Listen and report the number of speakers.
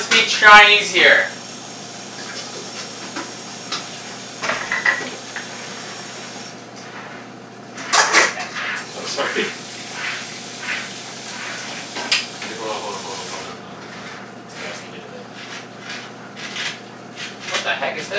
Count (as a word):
two